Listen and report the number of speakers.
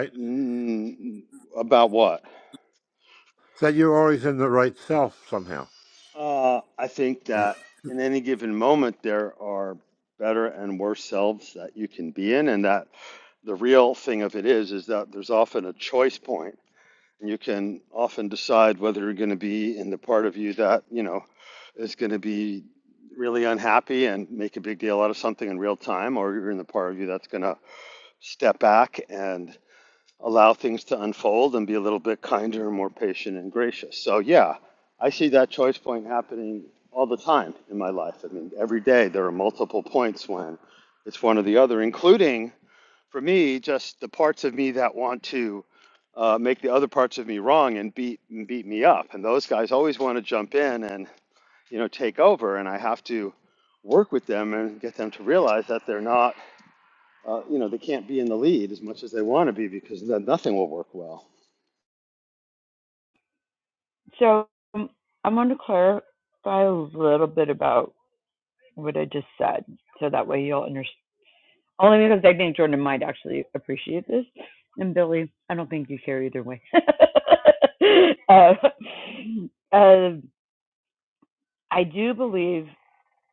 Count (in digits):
3